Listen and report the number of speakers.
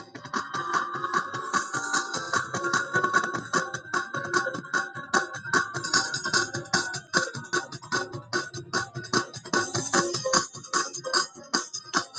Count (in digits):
0